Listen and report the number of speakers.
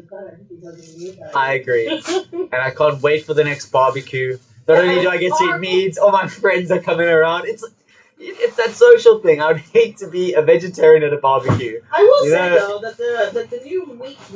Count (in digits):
3